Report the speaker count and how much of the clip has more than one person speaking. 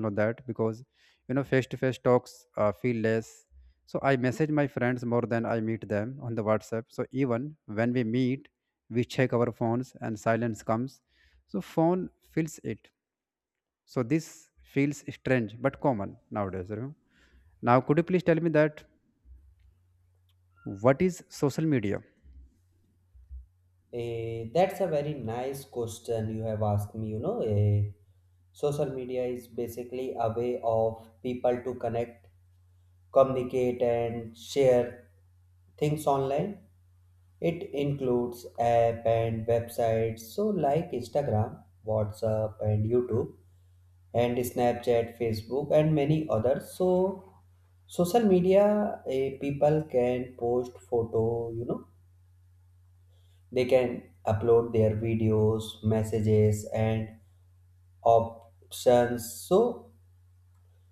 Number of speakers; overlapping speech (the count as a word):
two, no overlap